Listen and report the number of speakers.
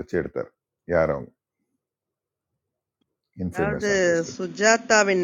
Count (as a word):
two